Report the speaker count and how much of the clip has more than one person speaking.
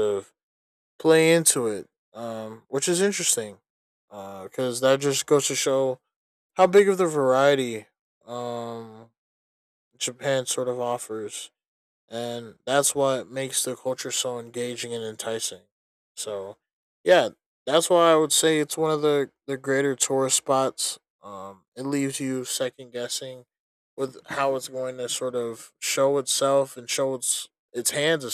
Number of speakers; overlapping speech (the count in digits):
1, no overlap